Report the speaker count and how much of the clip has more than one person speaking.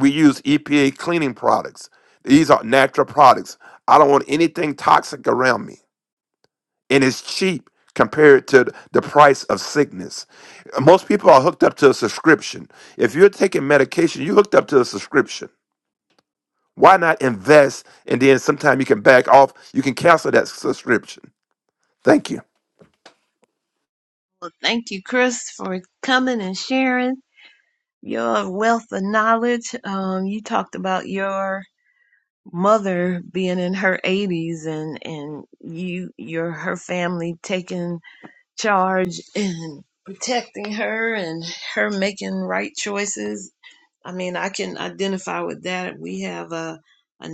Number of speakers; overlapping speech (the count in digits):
2, no overlap